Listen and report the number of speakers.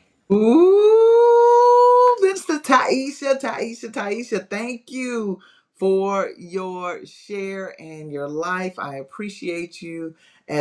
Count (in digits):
1